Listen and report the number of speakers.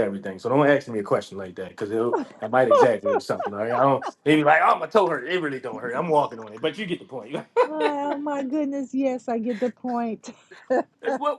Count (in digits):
2